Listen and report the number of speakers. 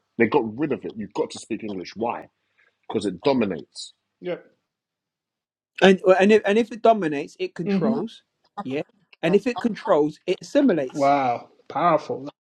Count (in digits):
3